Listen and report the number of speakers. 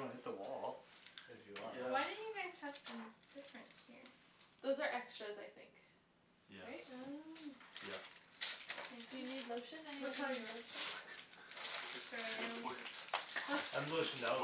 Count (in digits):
4